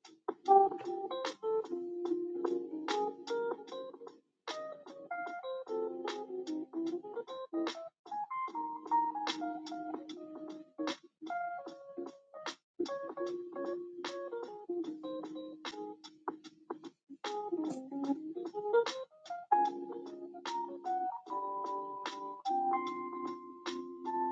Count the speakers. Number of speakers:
0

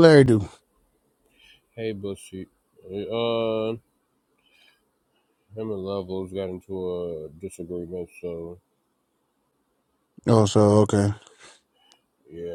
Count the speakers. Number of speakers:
2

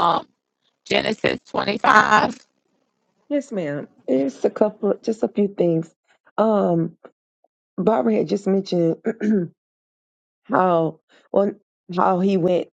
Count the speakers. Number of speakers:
2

